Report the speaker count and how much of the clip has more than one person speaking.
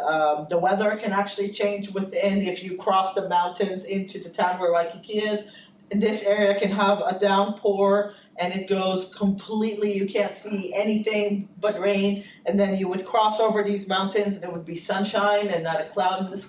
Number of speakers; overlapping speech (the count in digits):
1, no overlap